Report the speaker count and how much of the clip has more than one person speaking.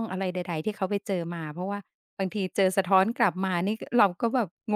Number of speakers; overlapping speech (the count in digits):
1, no overlap